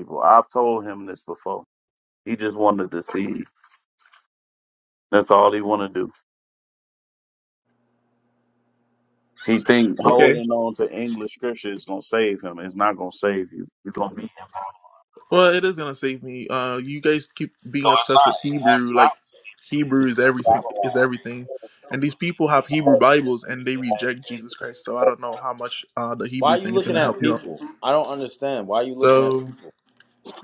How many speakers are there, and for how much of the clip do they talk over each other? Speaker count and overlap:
3, about 21%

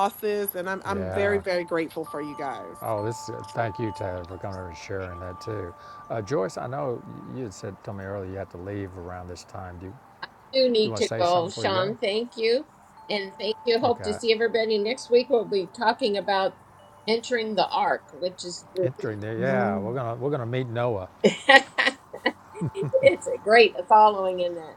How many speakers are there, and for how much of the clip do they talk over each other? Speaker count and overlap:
3, about 10%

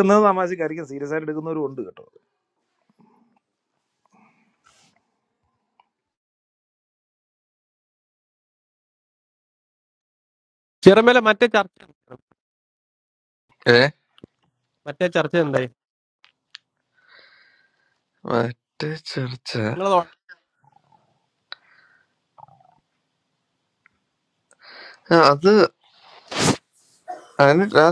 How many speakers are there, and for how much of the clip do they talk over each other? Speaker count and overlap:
3, no overlap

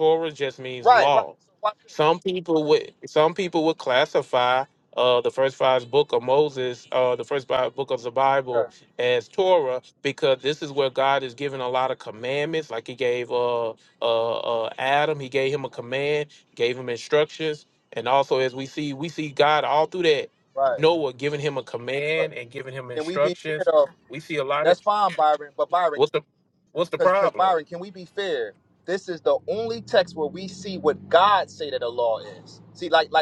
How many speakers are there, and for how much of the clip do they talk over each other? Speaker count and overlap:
2, about 6%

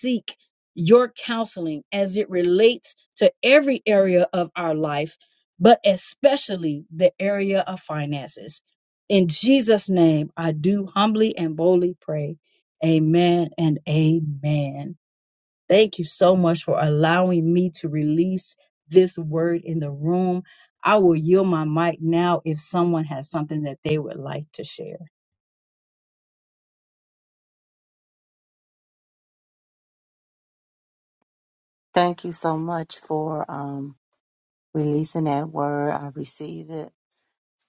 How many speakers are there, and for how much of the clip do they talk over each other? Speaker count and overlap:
2, no overlap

